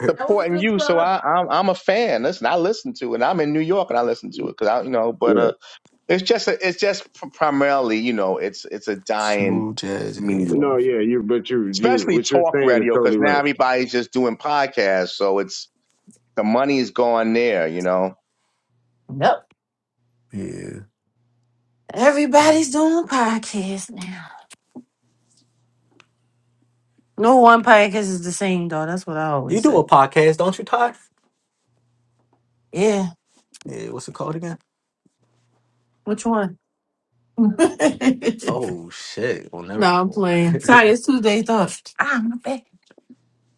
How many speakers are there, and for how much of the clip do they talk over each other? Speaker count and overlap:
4, about 12%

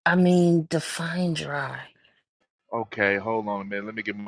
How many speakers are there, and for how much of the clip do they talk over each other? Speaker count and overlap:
2, no overlap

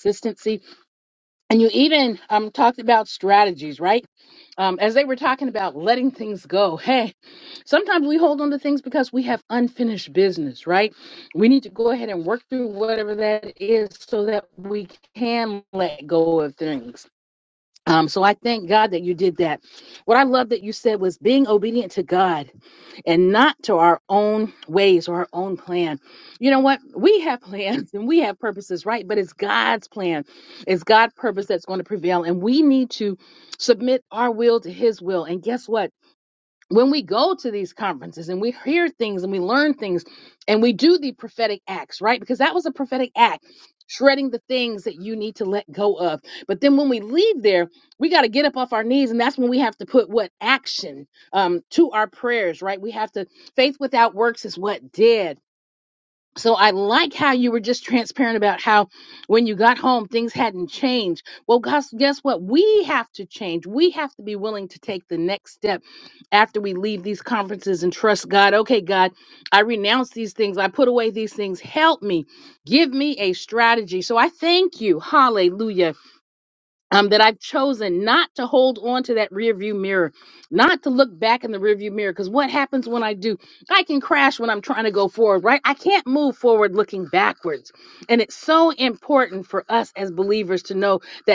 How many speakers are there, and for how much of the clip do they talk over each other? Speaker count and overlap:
1, no overlap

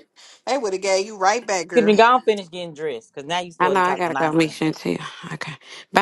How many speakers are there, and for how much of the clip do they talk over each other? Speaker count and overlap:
3, about 18%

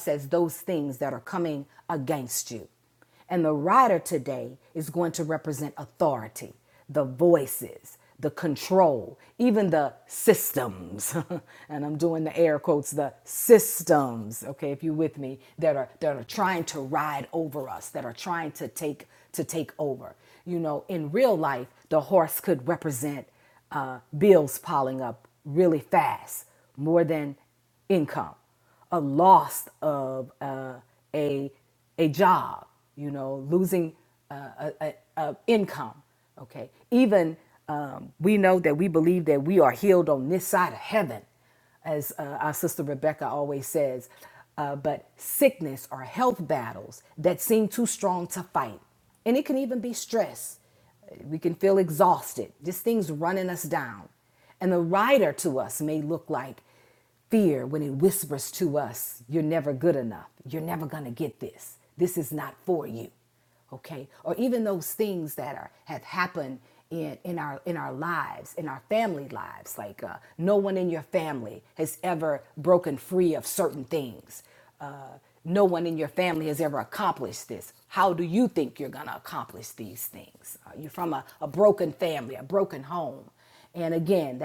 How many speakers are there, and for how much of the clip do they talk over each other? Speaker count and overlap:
1, no overlap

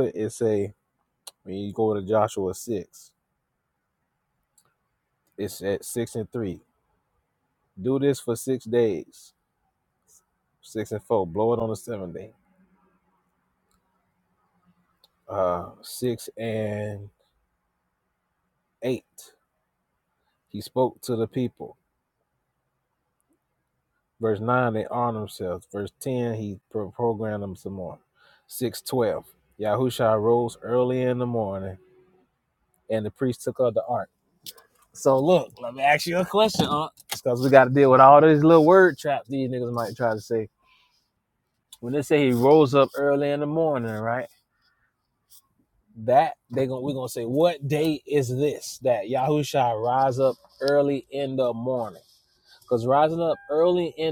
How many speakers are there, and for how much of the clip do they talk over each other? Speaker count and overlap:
1, no overlap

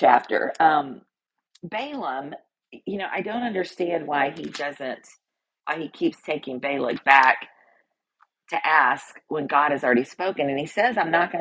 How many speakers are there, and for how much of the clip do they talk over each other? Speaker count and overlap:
1, no overlap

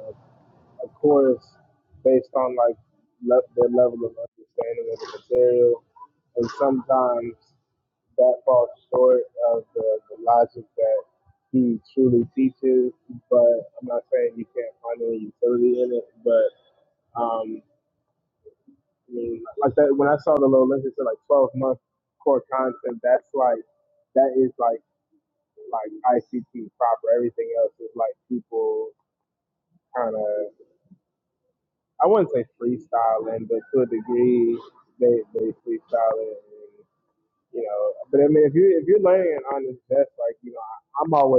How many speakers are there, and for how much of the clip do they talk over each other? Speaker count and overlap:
1, no overlap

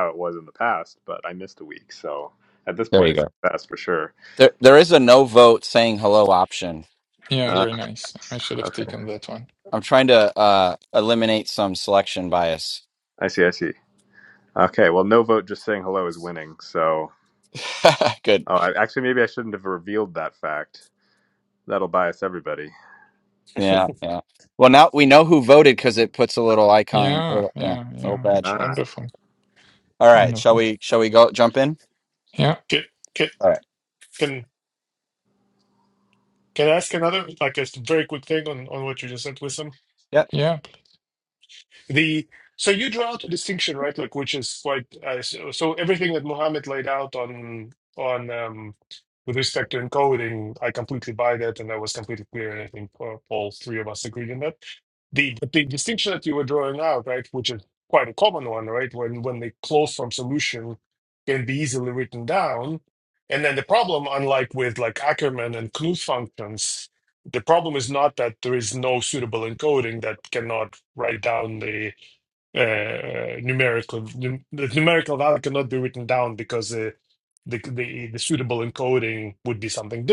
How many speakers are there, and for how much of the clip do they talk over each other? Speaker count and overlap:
4, about 4%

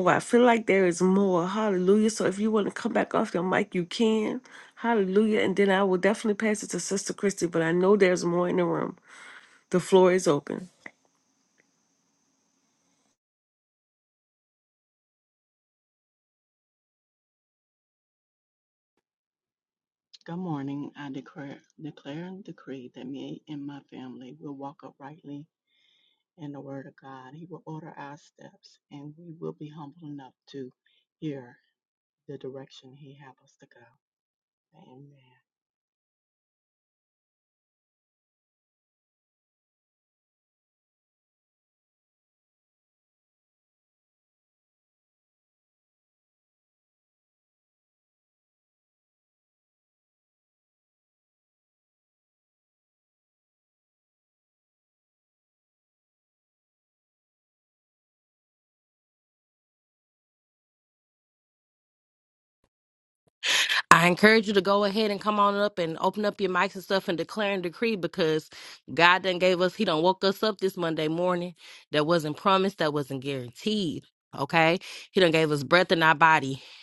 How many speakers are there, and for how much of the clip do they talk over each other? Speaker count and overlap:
3, no overlap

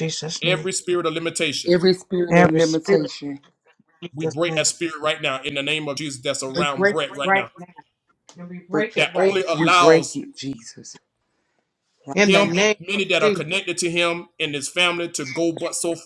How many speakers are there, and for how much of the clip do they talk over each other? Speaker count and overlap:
3, about 30%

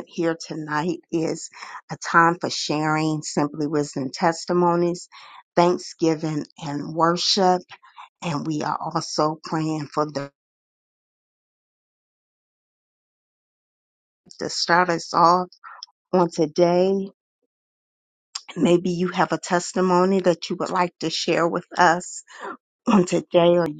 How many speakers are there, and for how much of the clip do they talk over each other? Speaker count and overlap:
1, no overlap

